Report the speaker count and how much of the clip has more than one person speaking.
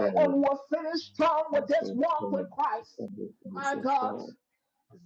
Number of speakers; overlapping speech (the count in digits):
2, about 33%